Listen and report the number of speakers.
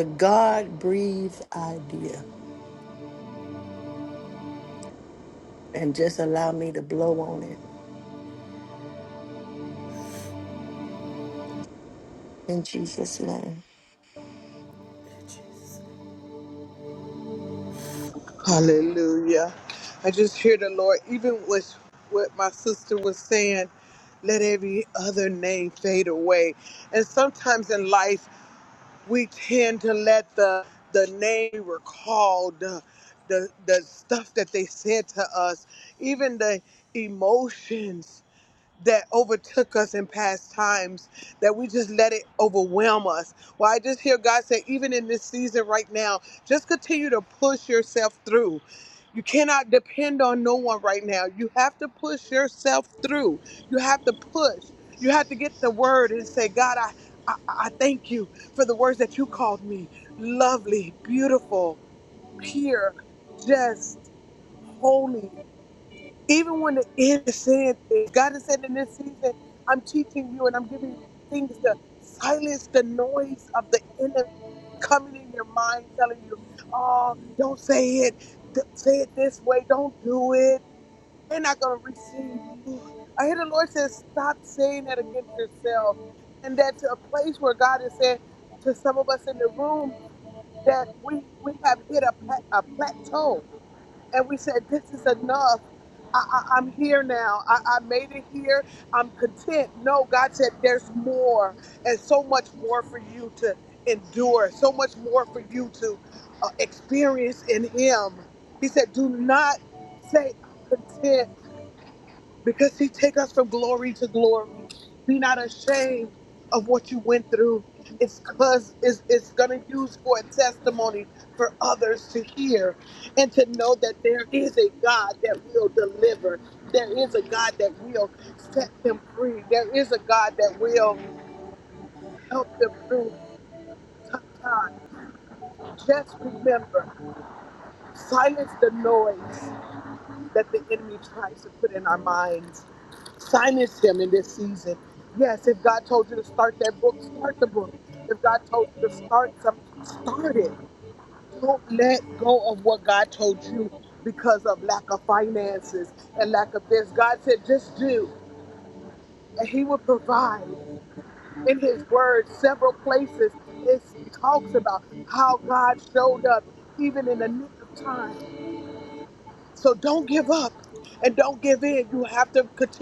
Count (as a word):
two